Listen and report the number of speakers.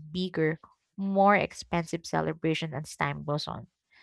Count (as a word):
one